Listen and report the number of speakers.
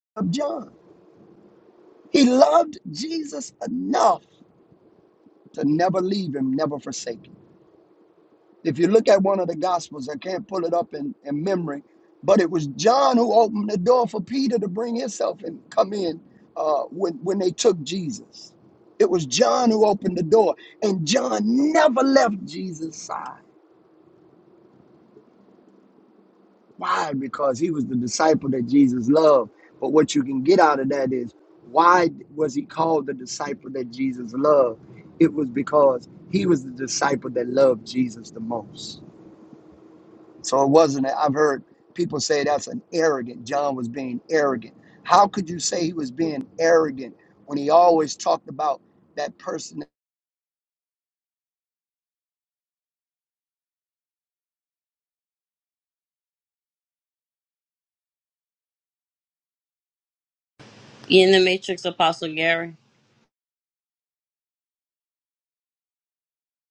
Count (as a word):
two